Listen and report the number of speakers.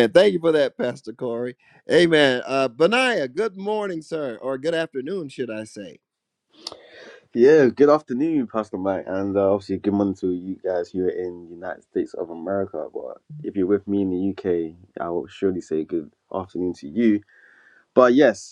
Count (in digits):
2